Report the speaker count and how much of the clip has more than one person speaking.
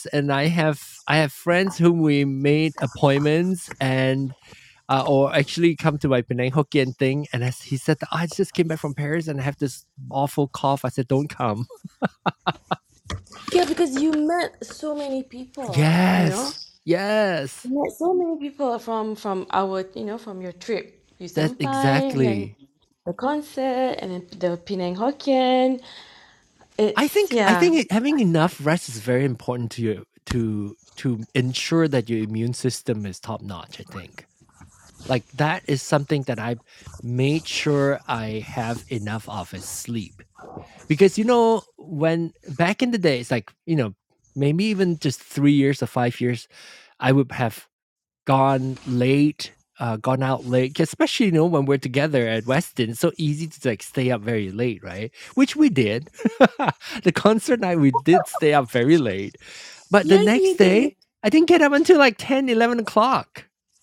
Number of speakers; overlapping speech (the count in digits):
2, about 5%